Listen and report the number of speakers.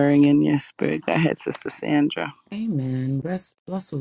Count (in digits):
2